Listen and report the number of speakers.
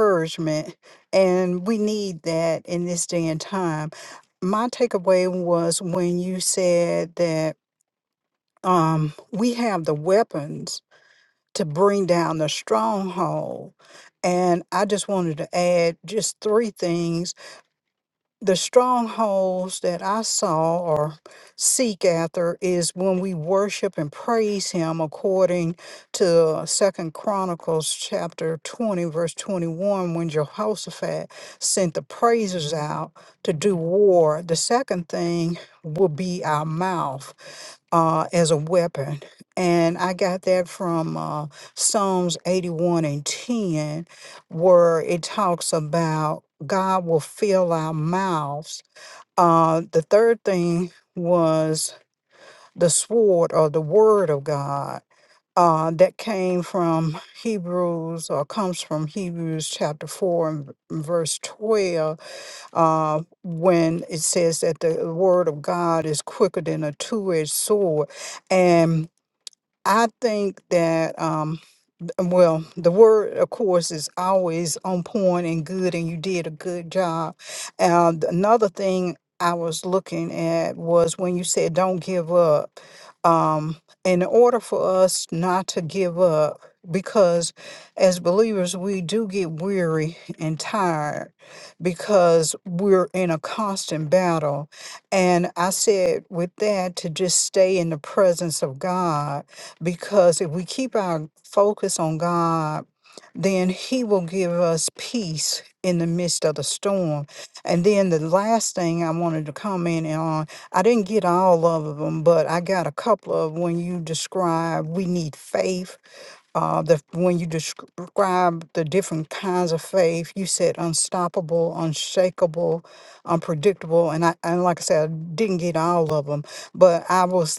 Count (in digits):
1